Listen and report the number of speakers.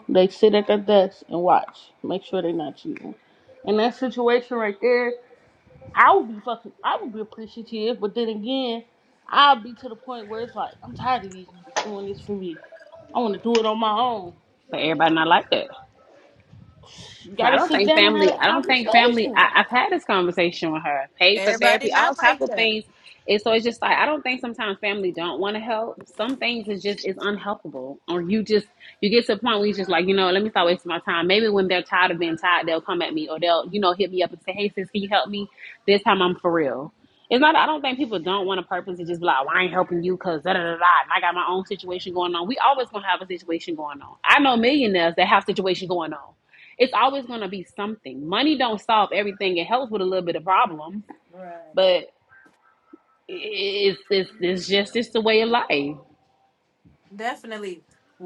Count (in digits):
3